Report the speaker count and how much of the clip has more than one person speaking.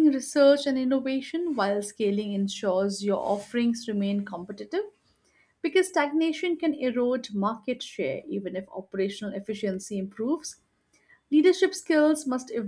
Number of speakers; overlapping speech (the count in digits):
1, no overlap